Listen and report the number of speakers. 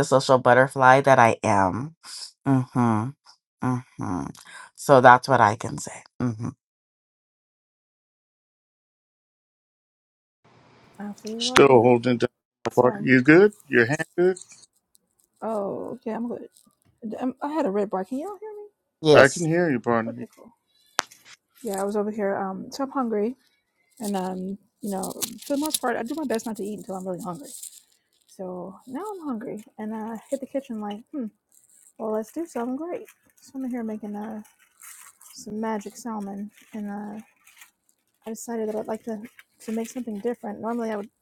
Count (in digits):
3